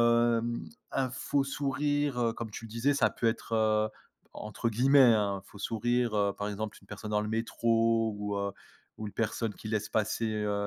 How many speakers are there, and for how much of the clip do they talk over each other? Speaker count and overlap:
1, no overlap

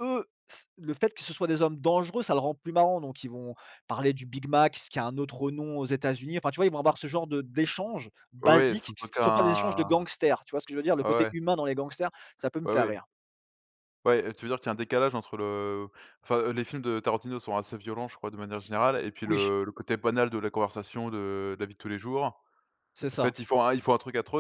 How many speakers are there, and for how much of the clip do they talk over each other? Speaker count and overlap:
2, about 10%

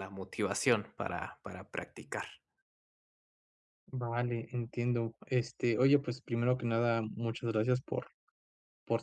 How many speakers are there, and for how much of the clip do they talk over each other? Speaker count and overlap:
2, no overlap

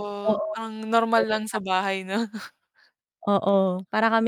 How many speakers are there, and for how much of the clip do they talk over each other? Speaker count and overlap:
2, no overlap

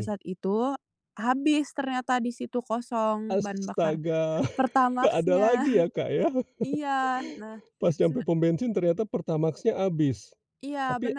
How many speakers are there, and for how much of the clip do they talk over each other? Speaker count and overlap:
2, about 13%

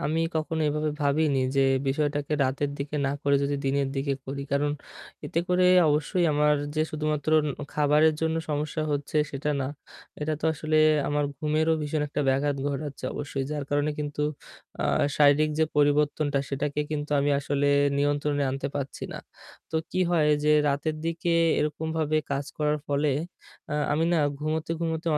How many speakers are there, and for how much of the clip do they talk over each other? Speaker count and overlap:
1, no overlap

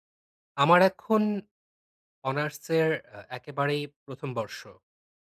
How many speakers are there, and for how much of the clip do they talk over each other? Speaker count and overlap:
1, no overlap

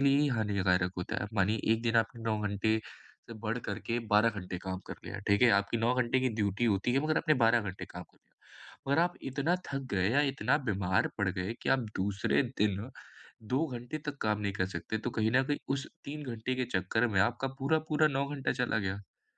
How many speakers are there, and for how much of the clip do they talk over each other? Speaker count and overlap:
1, no overlap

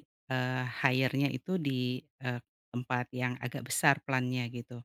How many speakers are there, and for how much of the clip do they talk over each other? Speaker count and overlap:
1, no overlap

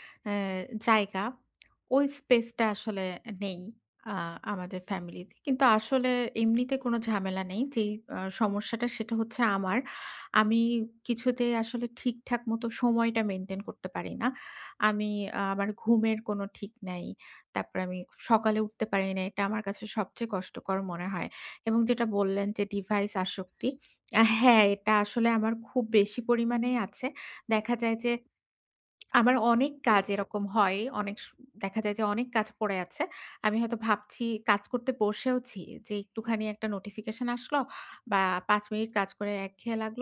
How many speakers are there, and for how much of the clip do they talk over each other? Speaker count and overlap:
1, no overlap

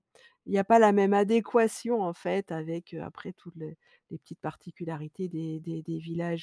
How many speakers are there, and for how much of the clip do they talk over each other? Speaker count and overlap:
1, no overlap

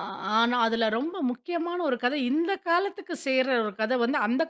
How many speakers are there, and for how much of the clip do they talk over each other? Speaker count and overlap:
1, no overlap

